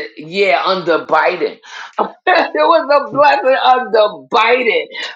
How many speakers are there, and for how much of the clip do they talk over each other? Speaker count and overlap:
1, no overlap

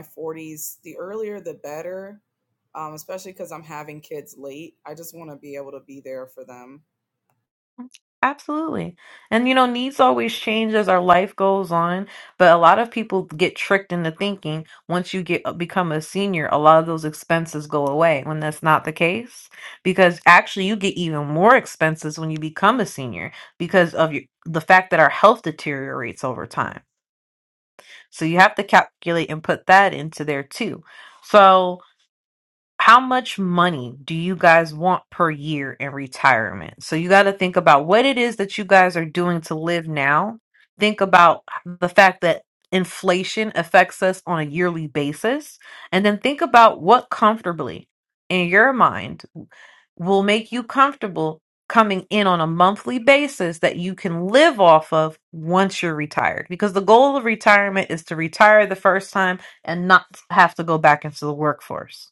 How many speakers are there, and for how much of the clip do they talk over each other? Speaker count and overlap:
2, no overlap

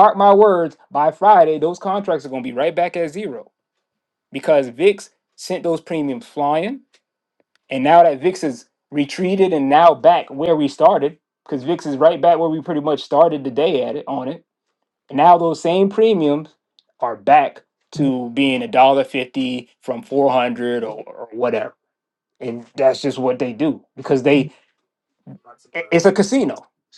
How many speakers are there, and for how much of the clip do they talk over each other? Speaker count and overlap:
1, no overlap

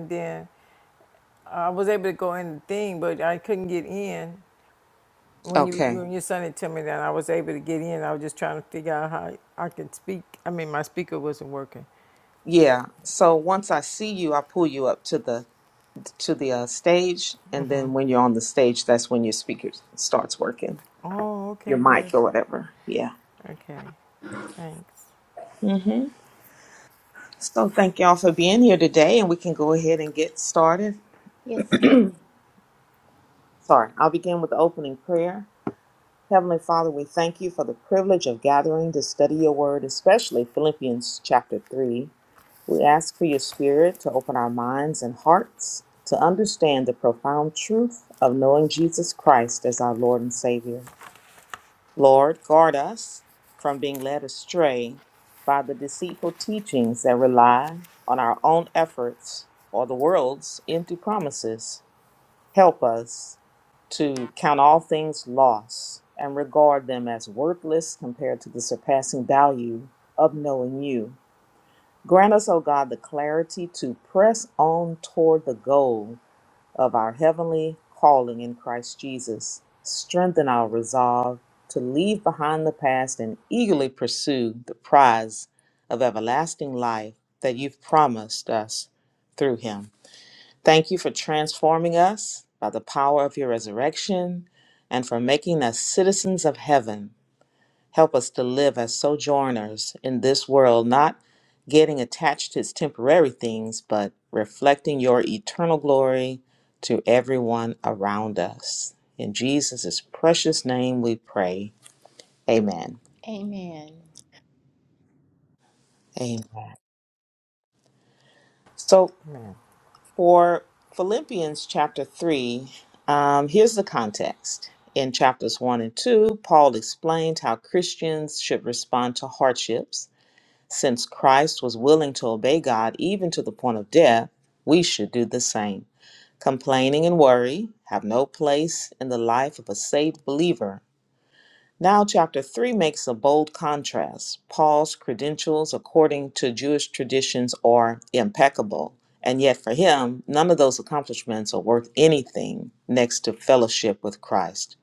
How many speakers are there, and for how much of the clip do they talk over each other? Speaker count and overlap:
3, about 1%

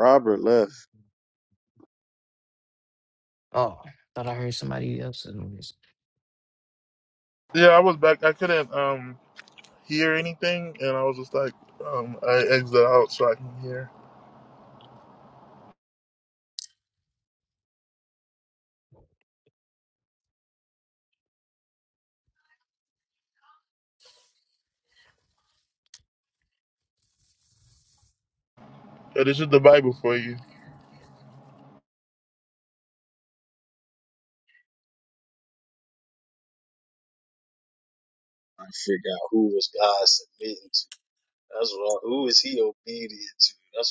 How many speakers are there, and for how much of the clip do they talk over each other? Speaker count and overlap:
3, no overlap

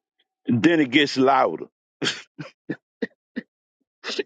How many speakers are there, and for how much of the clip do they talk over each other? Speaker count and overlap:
1, no overlap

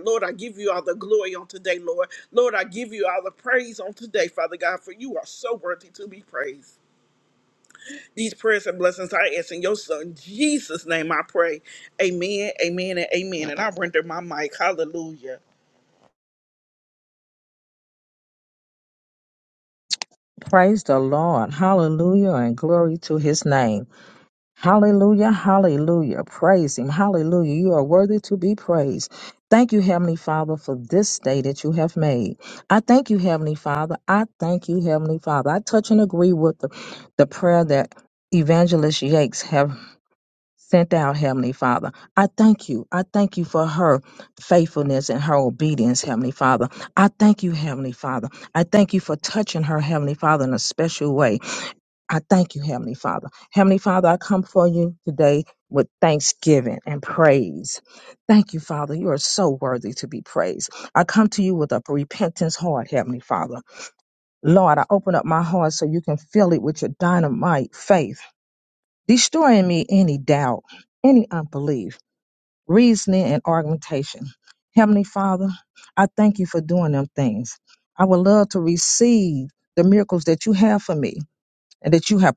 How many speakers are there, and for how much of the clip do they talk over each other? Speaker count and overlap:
2, no overlap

